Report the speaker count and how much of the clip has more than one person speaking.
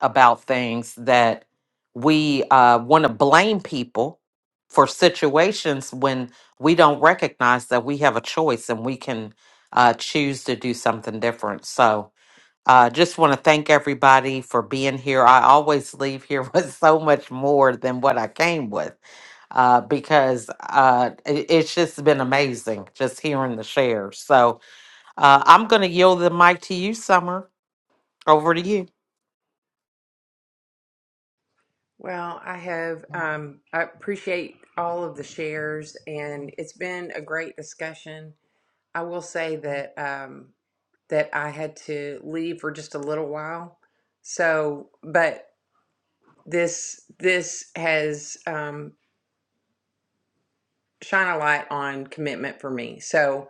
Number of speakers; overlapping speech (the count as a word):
two, no overlap